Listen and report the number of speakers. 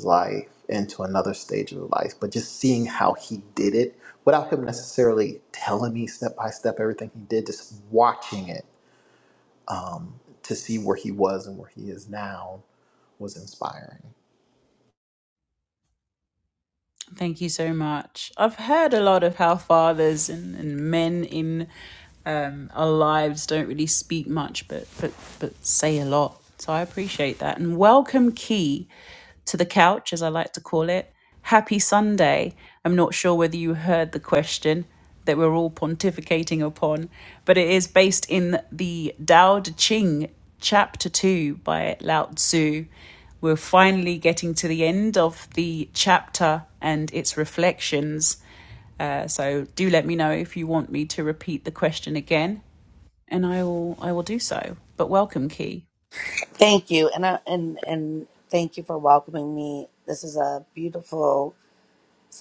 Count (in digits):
3